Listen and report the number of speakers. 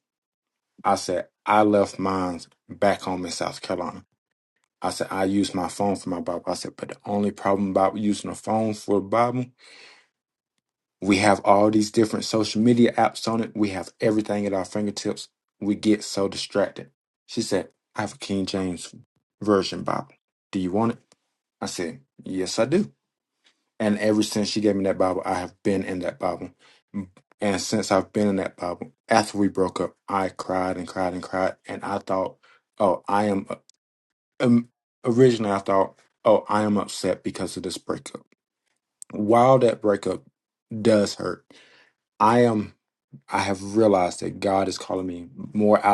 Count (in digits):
1